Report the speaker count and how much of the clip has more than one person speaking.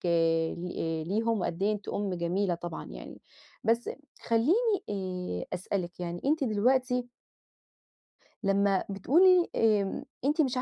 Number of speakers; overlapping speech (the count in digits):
1, no overlap